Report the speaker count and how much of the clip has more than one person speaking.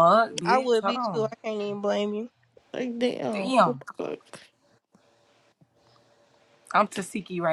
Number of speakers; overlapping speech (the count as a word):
three, about 16%